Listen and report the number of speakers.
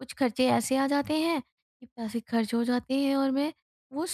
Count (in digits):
1